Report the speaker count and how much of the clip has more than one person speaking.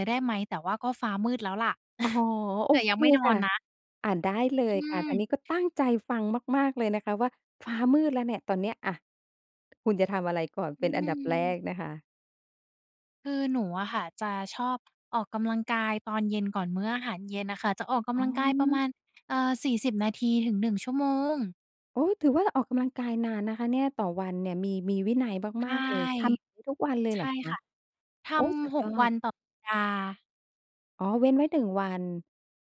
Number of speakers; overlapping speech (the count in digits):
2, about 10%